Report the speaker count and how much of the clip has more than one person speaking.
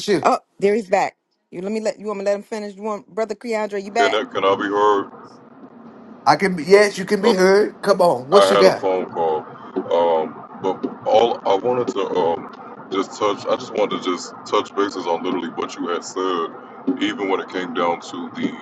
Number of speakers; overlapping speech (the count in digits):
3, about 6%